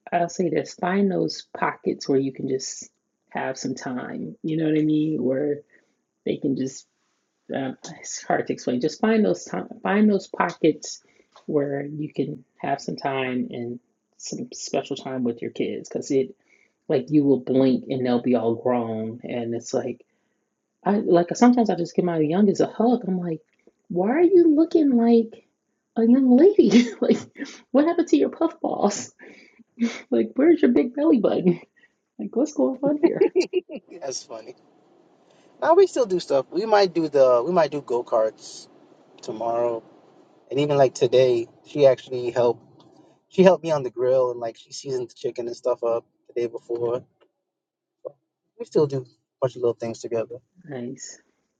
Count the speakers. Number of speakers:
2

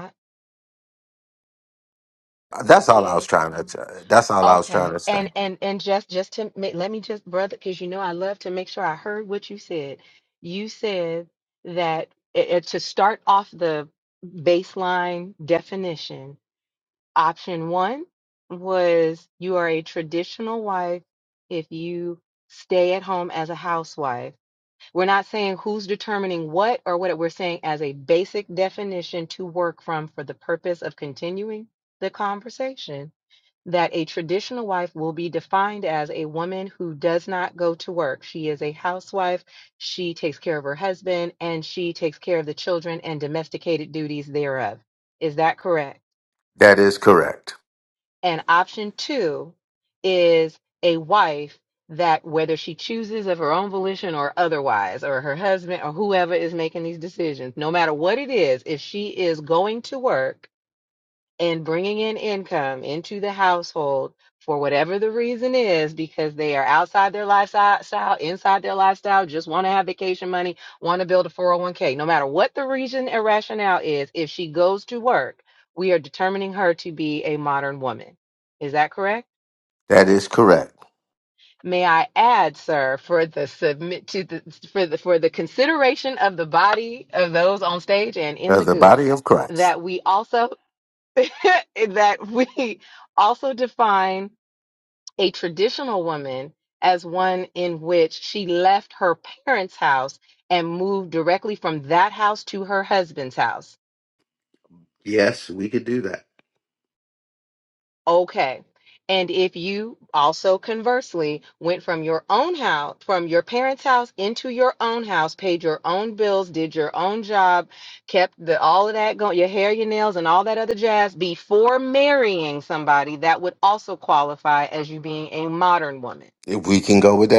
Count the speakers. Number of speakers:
2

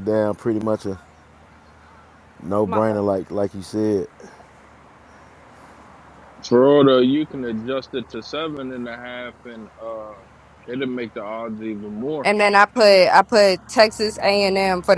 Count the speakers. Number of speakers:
3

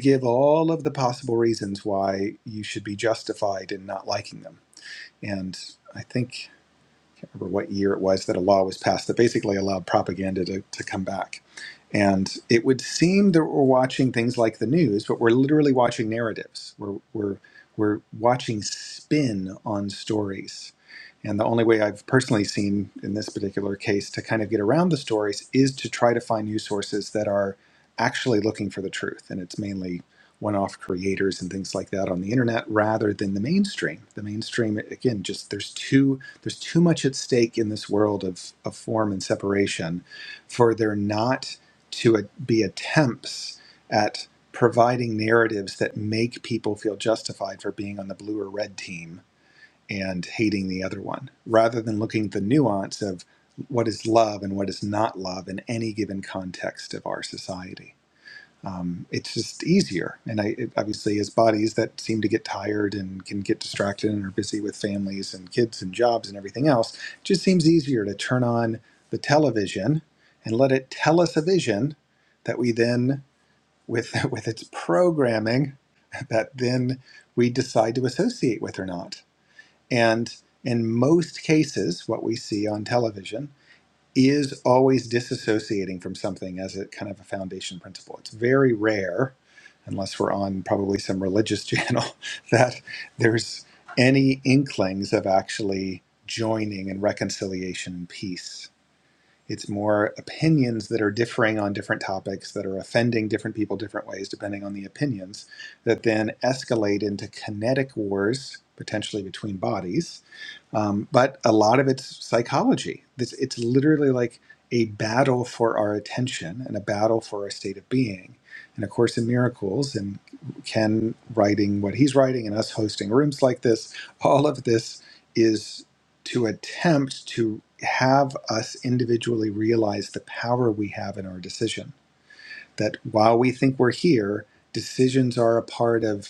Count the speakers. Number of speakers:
1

